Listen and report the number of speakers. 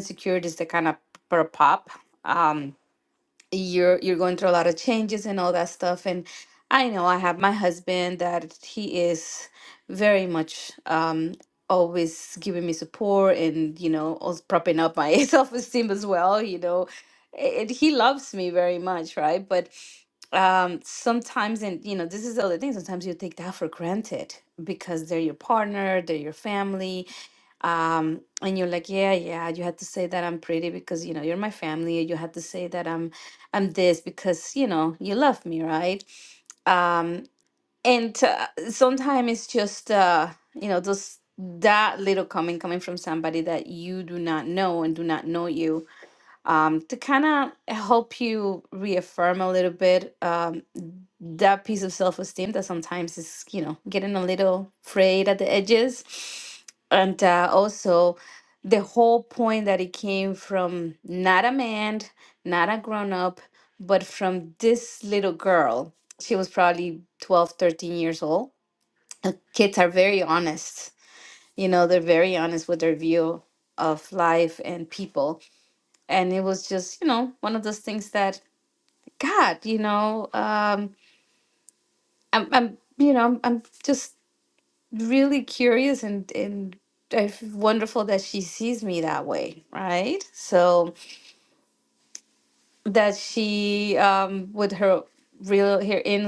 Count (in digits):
1